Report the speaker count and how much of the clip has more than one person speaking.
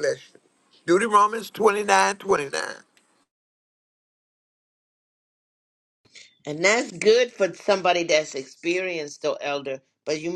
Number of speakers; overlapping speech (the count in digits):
2, no overlap